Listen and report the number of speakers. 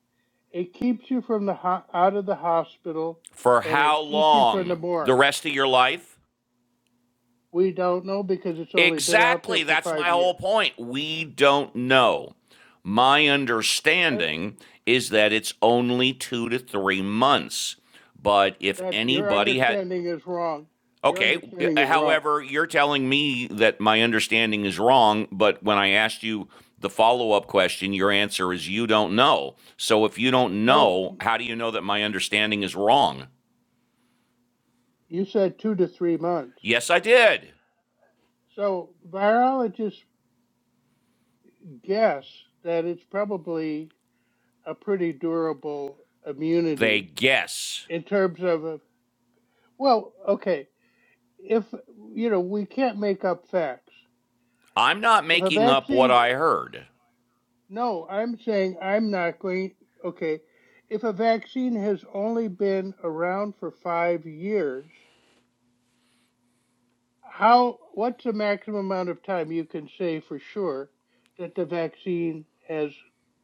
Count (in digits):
2